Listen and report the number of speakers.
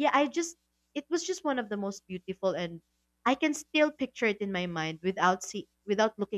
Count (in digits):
1